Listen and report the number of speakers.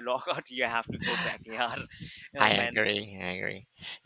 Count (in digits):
2